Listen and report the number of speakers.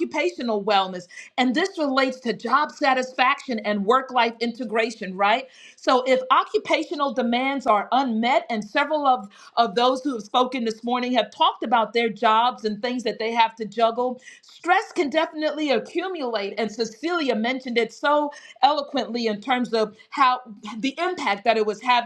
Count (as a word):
one